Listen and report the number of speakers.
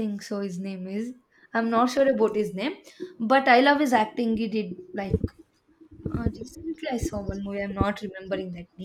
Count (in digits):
1